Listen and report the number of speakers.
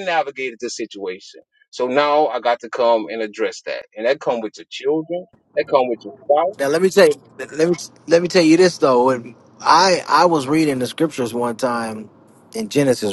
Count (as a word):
two